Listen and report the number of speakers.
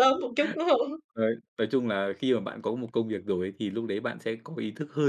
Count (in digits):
2